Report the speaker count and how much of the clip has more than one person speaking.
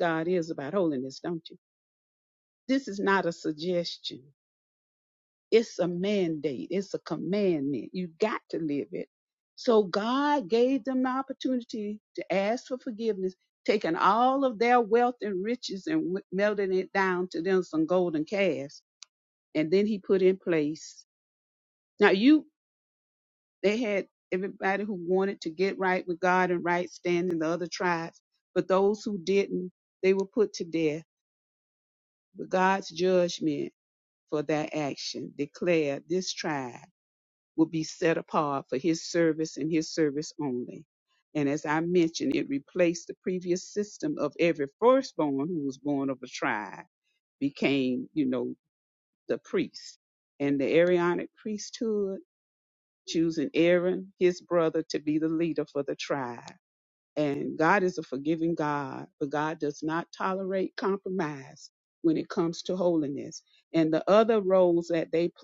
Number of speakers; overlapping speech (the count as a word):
one, no overlap